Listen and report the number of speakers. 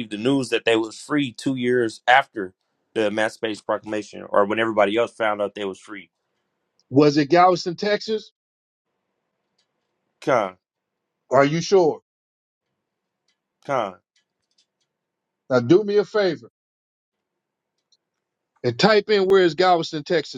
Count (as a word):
two